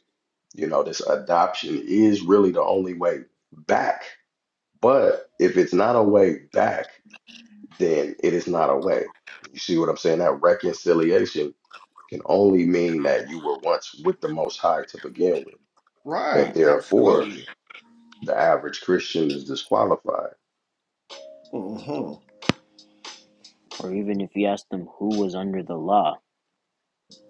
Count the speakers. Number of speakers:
3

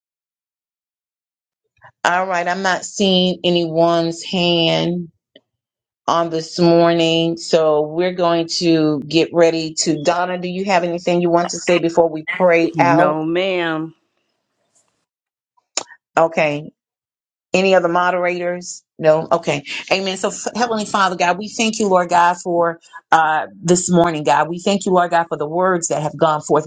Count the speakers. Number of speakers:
2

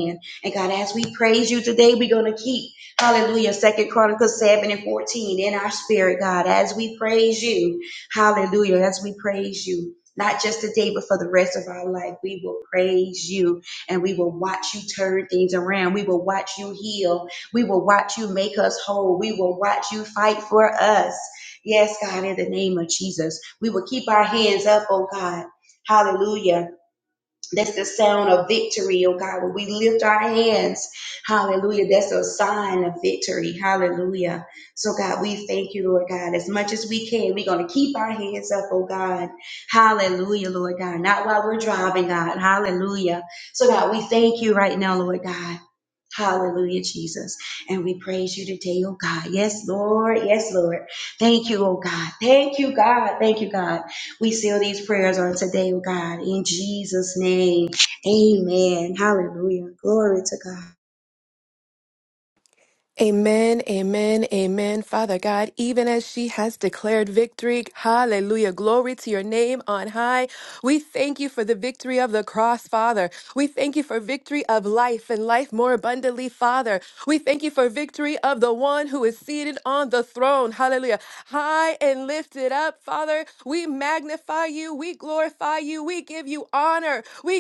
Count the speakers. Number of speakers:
2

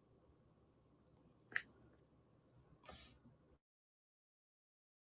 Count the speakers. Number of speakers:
0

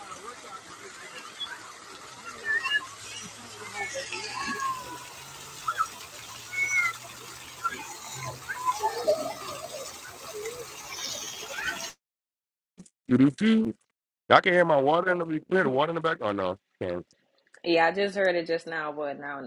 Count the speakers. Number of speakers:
2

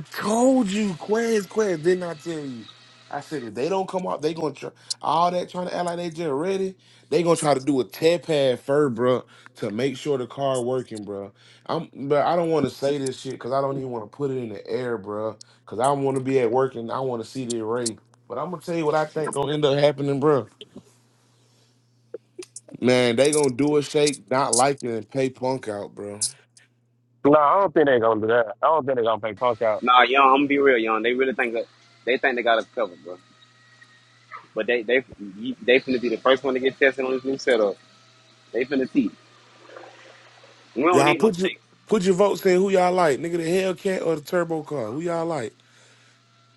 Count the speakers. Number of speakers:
3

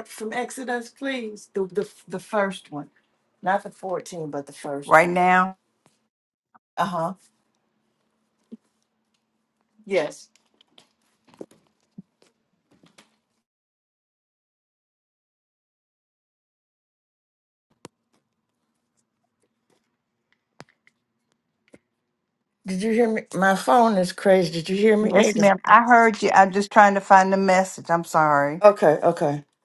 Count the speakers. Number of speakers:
2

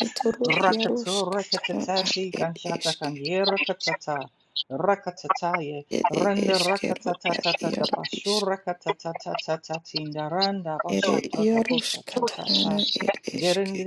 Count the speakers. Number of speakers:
2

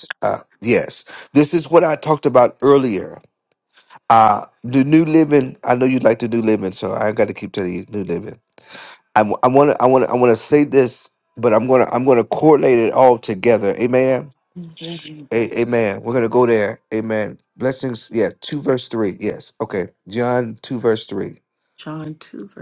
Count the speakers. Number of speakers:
2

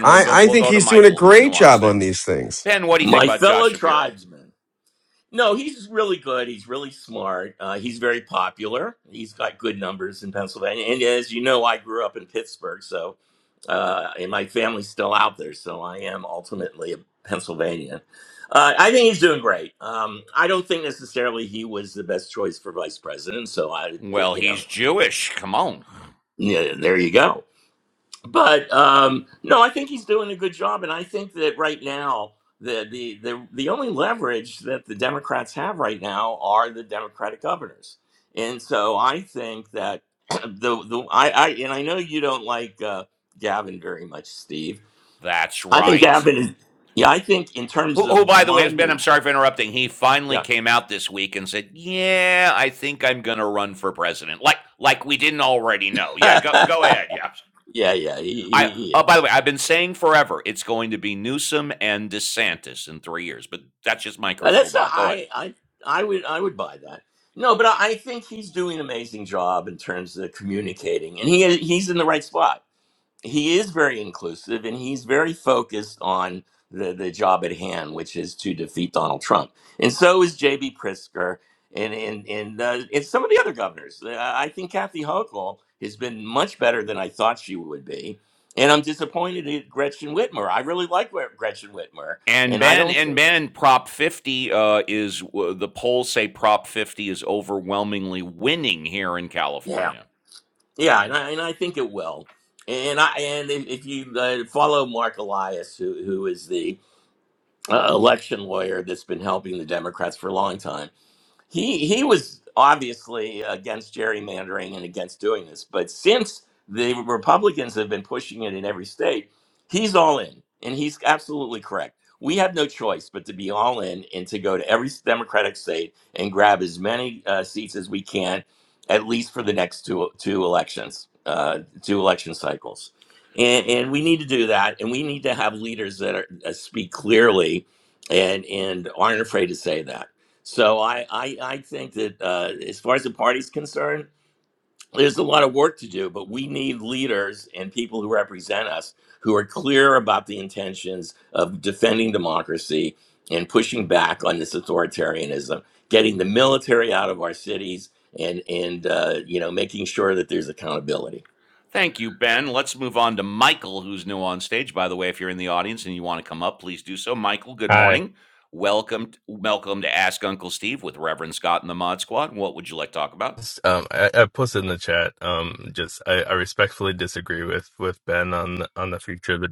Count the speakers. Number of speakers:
4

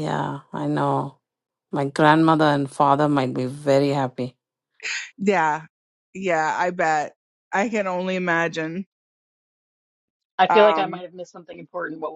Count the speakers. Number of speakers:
3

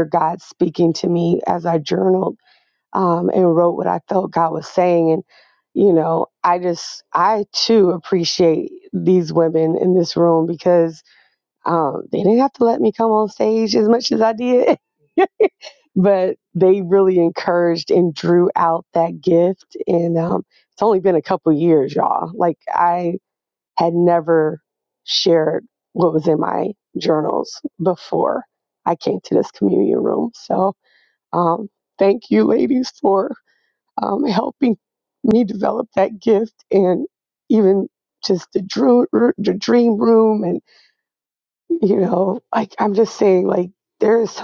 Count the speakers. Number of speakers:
1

